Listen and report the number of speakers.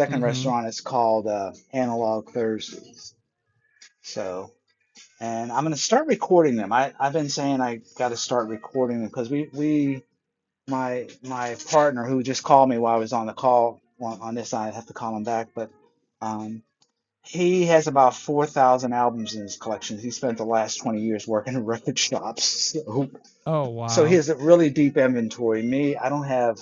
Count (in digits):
2